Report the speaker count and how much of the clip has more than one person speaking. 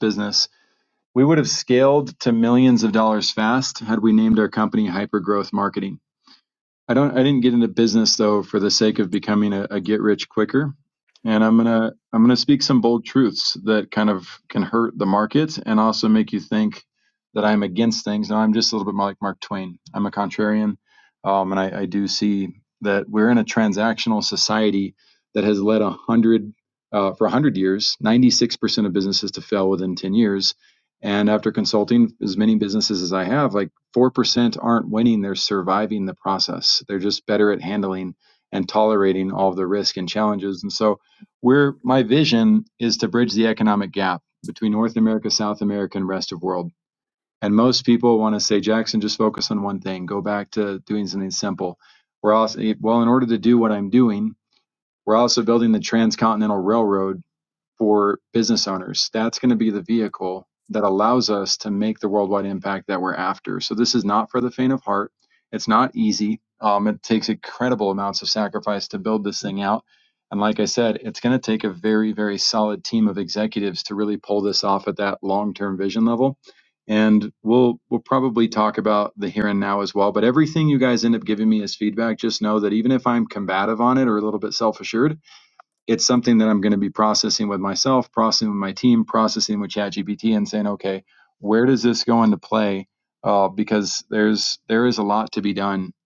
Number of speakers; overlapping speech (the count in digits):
1, no overlap